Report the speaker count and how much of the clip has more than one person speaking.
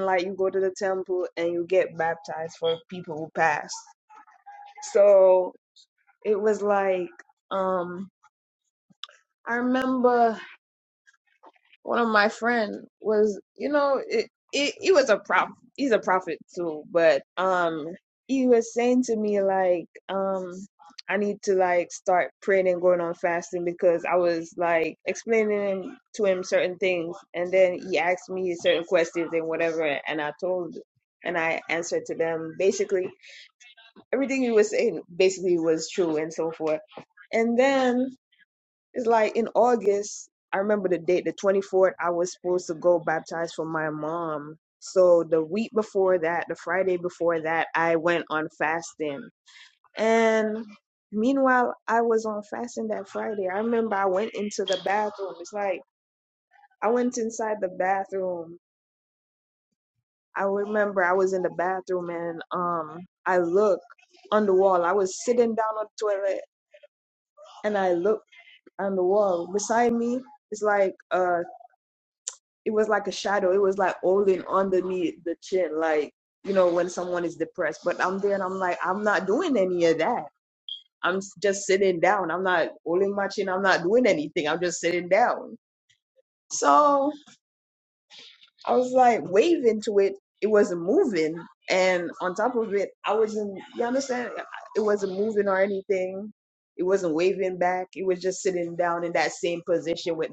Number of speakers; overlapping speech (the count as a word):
one, no overlap